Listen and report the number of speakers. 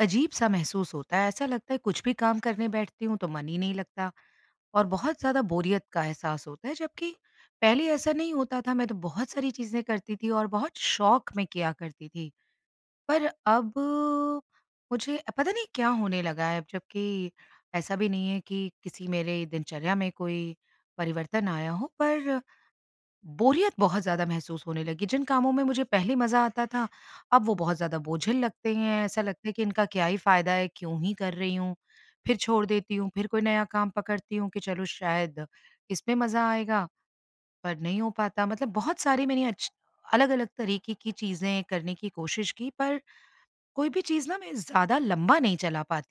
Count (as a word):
one